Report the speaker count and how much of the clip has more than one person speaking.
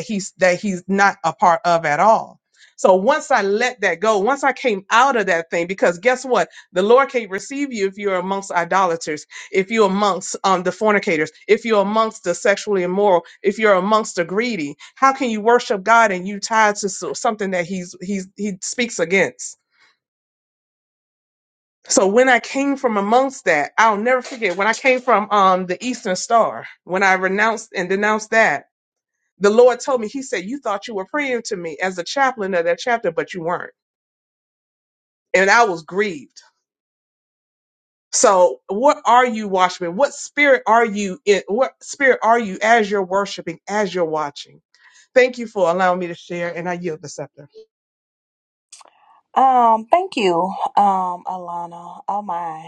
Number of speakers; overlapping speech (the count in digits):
2, no overlap